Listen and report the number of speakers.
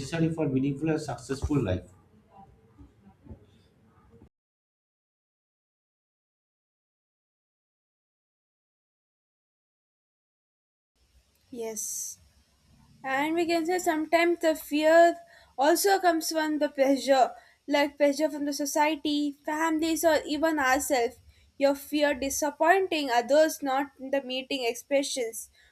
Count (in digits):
2